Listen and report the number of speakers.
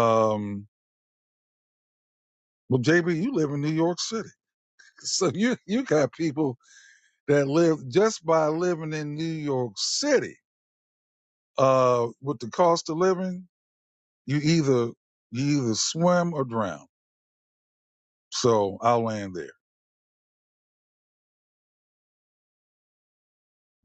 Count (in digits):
1